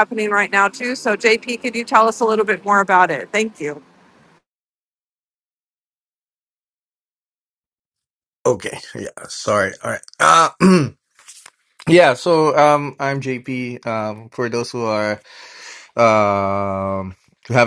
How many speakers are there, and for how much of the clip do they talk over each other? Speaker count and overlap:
2, no overlap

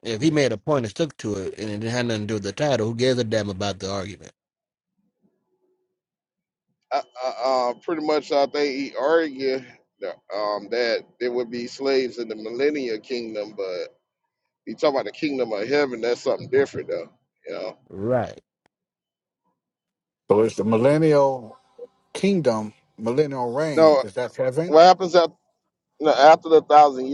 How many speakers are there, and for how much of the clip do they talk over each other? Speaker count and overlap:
3, about 1%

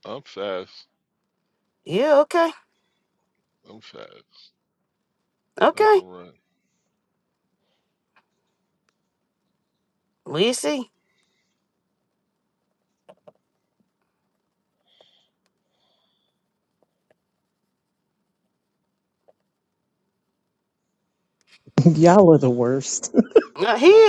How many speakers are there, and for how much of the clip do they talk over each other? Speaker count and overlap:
3, about 1%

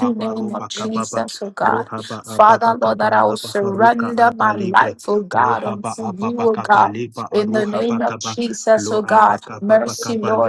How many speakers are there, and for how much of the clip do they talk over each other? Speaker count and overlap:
2, about 80%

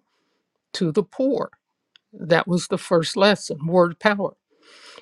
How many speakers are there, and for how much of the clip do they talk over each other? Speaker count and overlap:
1, no overlap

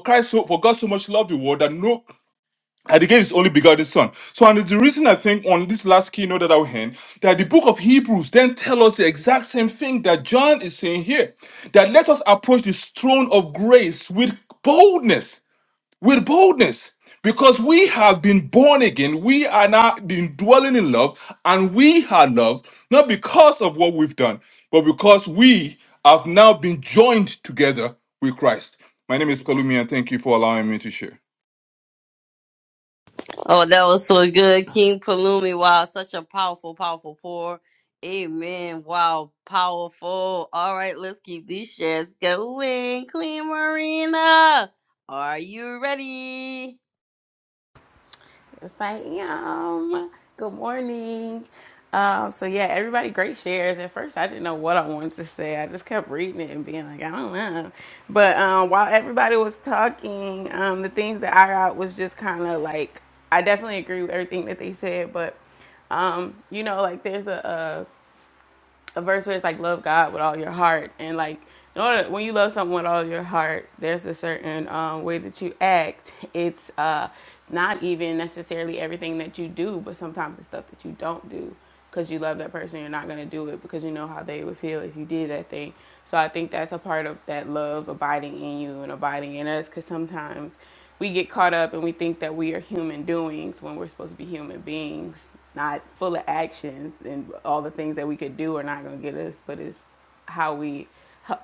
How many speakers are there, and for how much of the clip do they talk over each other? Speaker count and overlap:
3, no overlap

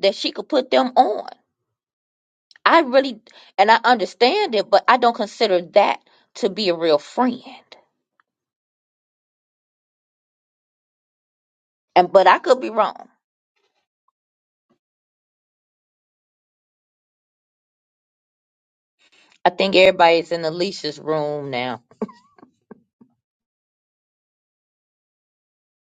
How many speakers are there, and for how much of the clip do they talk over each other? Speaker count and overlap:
1, no overlap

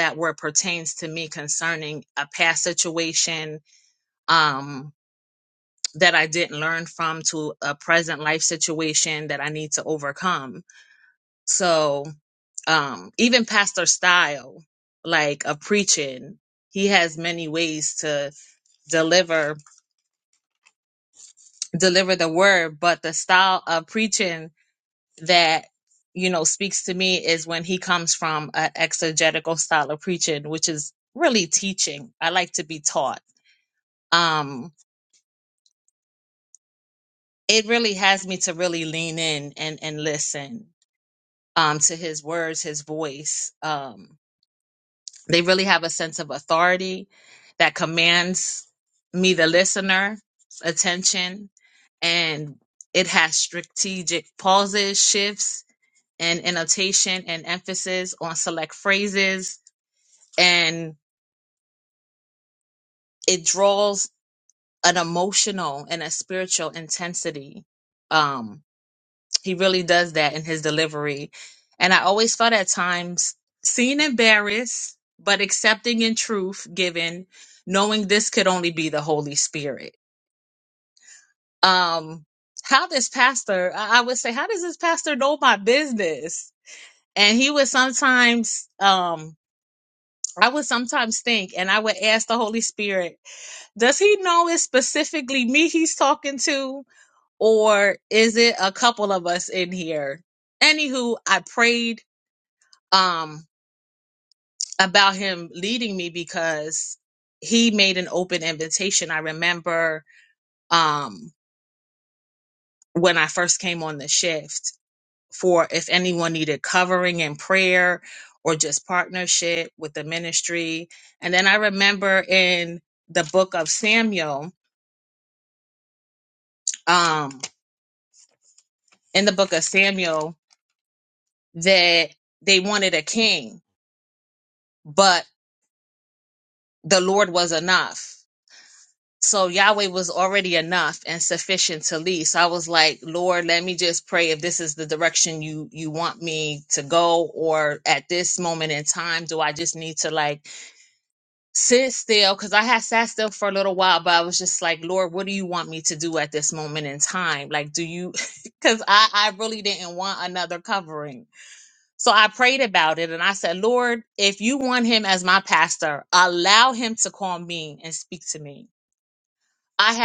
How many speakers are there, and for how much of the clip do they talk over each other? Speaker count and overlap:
1, no overlap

